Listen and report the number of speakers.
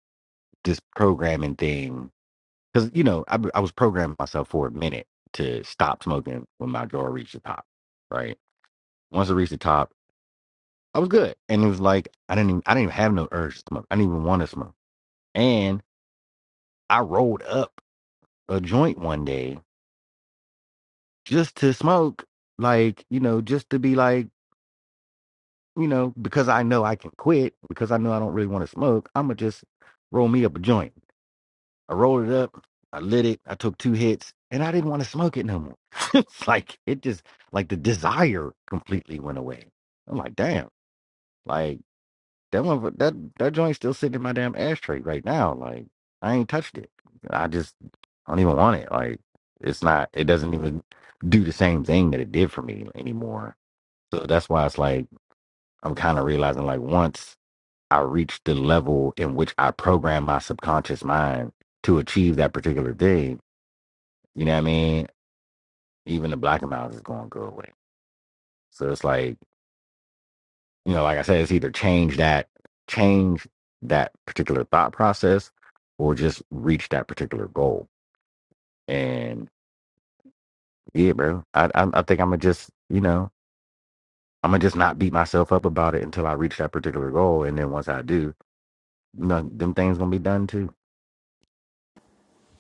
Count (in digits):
1